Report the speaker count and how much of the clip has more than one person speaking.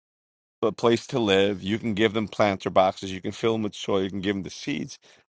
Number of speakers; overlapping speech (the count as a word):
one, no overlap